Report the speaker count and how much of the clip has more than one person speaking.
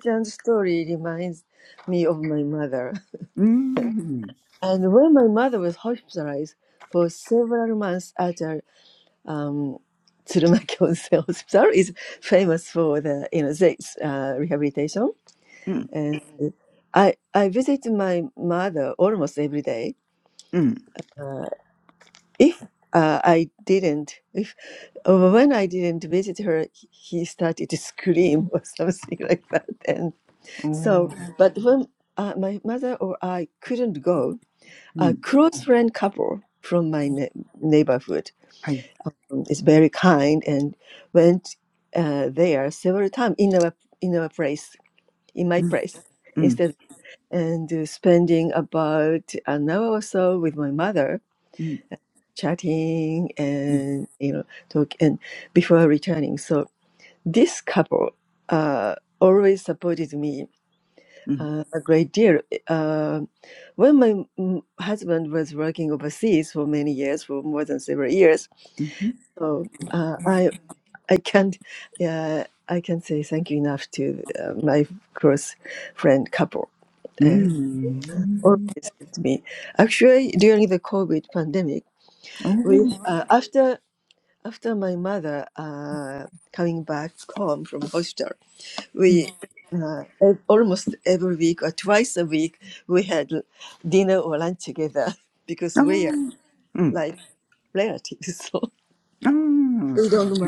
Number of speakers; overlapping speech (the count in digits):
2, about 3%